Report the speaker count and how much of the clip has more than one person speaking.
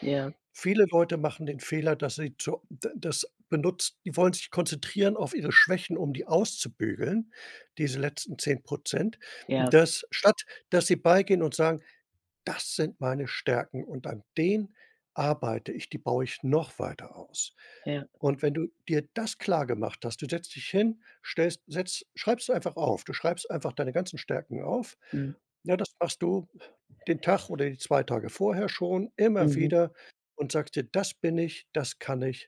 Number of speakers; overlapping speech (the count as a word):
two, about 2%